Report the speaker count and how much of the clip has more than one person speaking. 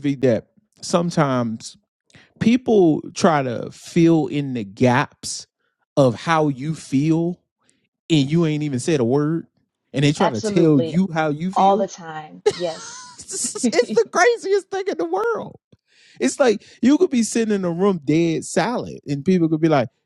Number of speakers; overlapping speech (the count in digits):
2, about 7%